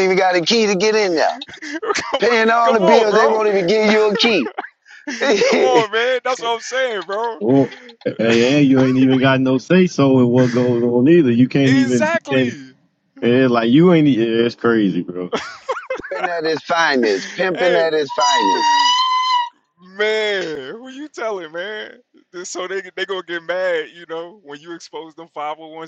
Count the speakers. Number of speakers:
3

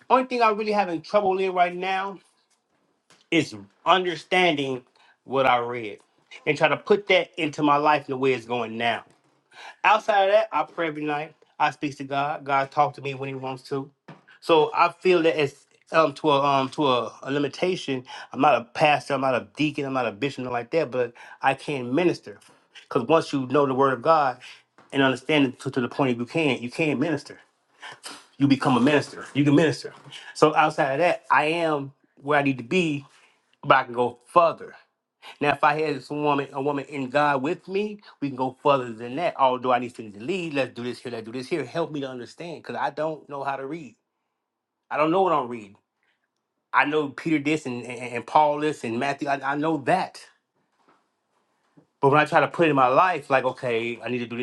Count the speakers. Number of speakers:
1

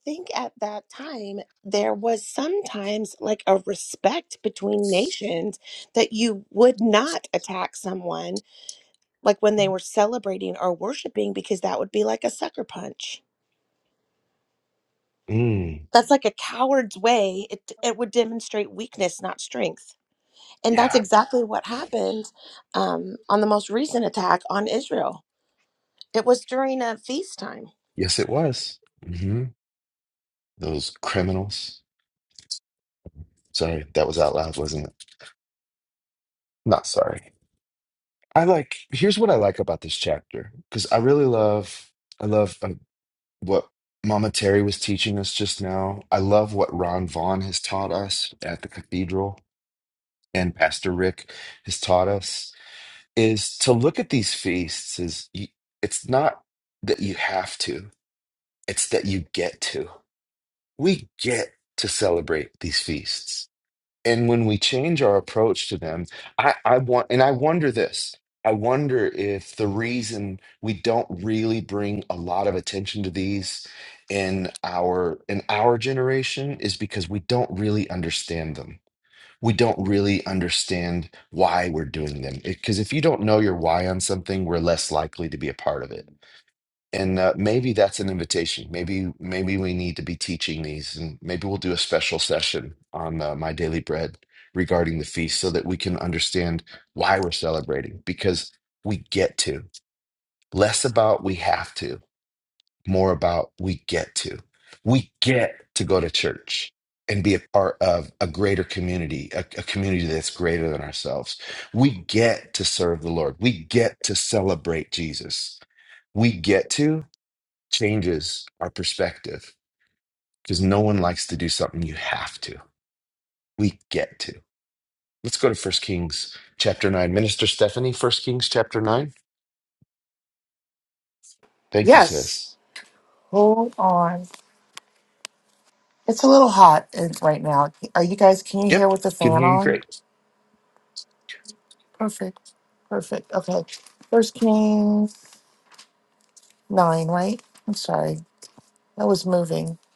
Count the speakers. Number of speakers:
3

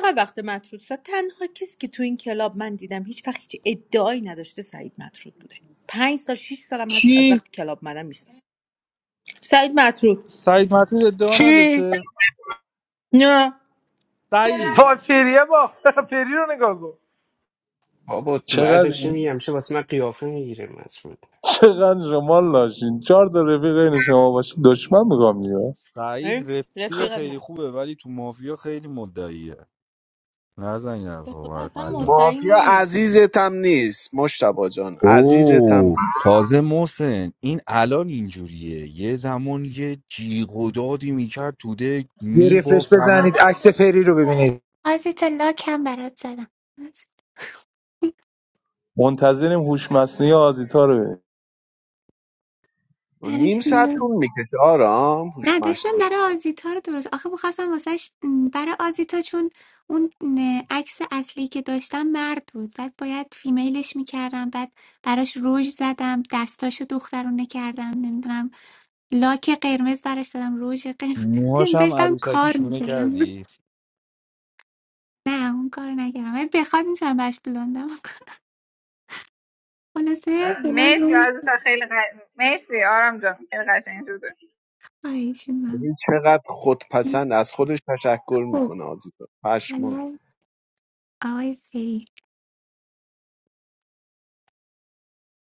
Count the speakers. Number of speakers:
8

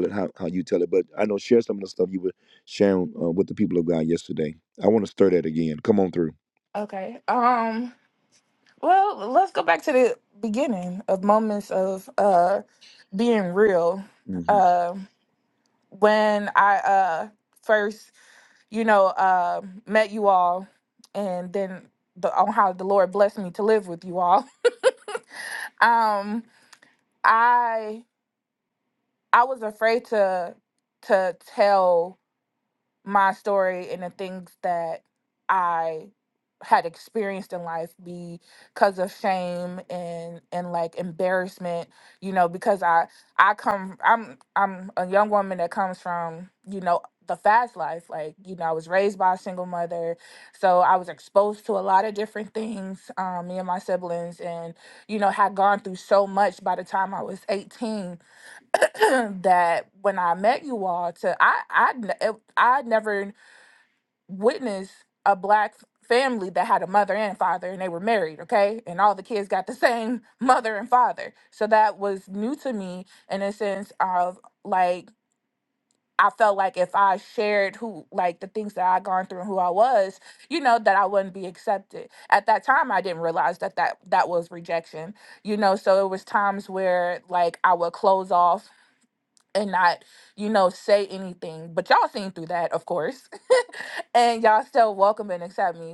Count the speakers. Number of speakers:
2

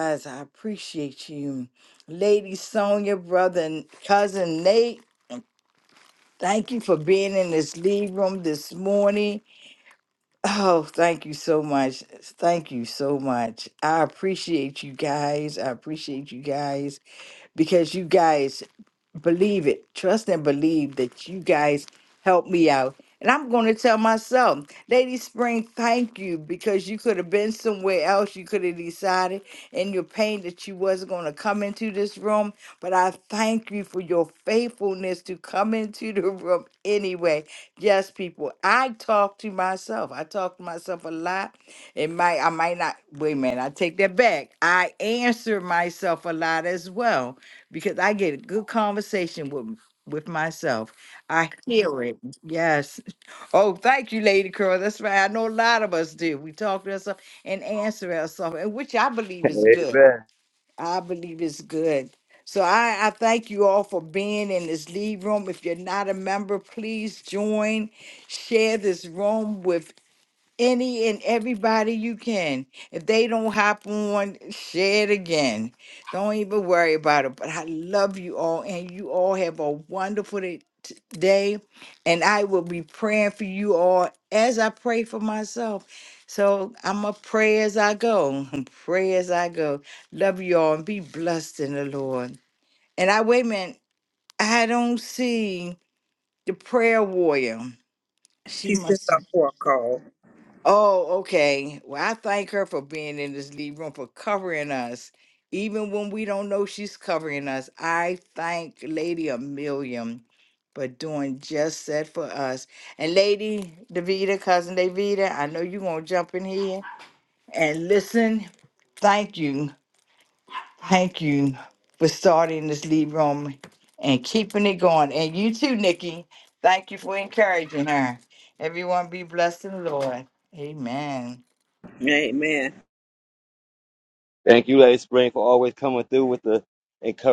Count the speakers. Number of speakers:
3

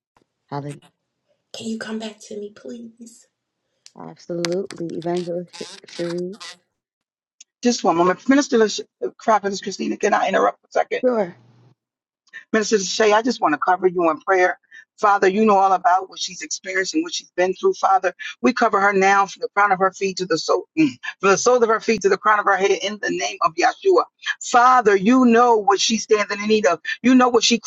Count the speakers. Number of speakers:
3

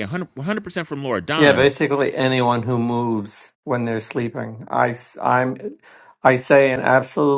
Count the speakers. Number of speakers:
2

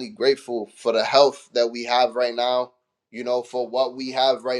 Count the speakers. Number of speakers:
1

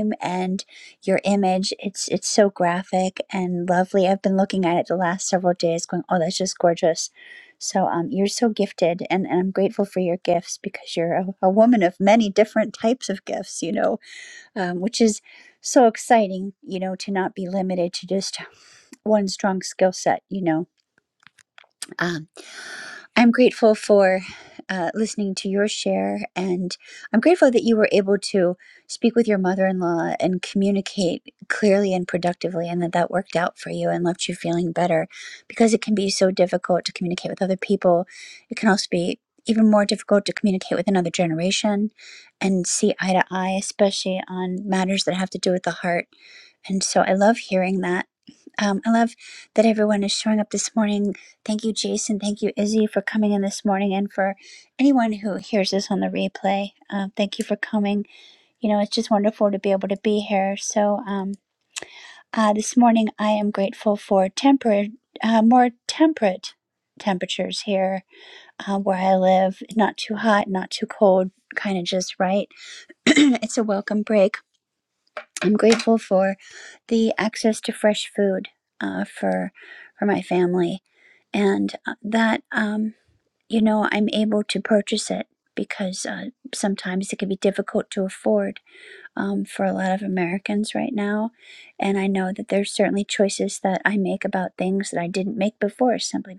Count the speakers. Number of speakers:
1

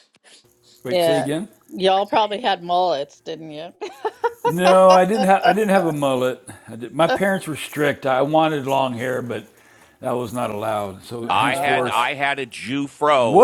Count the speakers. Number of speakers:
3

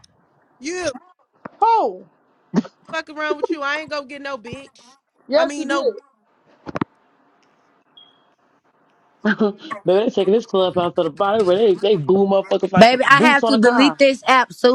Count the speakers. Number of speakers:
4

